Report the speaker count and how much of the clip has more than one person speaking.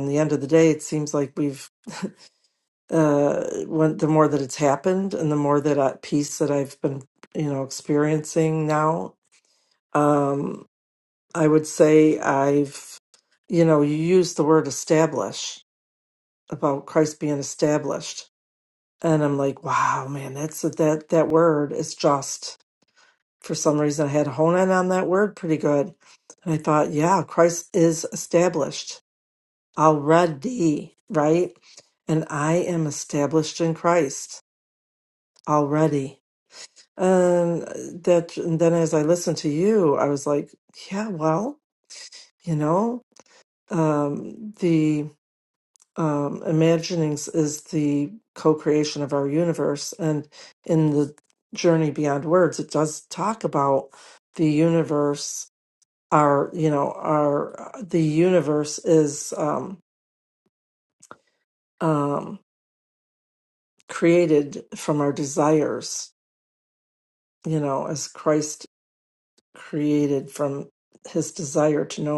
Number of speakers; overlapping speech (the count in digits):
1, no overlap